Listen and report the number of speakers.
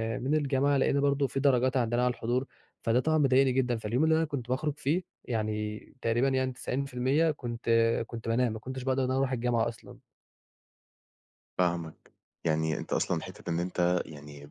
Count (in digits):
2